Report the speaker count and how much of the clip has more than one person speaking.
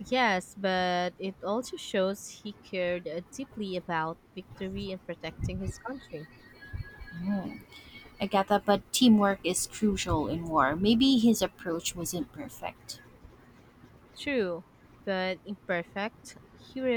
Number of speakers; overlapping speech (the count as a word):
two, no overlap